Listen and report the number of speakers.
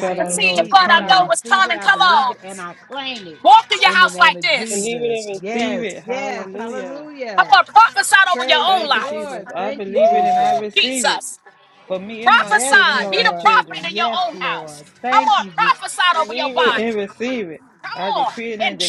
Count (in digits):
3